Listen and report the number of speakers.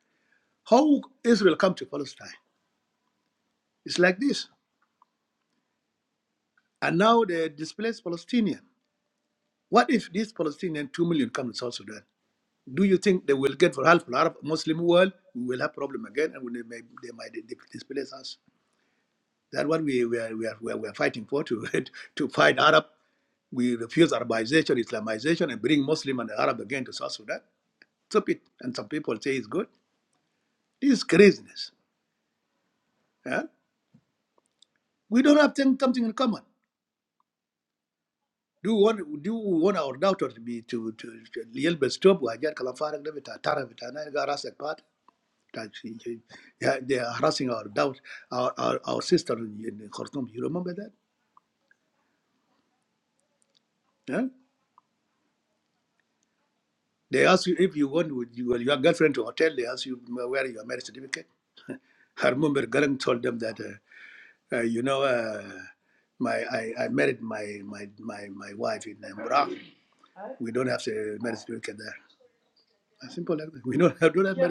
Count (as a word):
one